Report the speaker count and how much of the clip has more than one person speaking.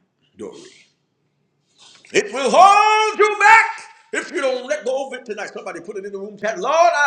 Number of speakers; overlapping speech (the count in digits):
1, no overlap